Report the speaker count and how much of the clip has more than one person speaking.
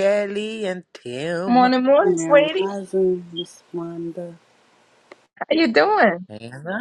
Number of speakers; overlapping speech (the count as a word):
three, about 14%